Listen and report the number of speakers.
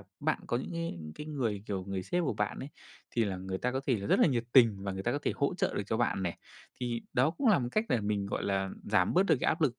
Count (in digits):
1